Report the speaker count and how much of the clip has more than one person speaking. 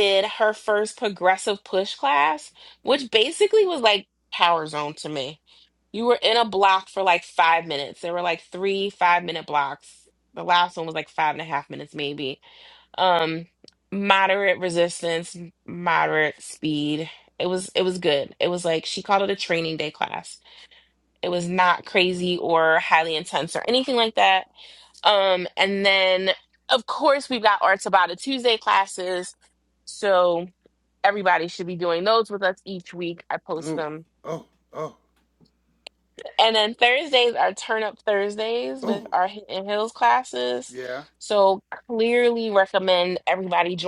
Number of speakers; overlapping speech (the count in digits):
2, about 1%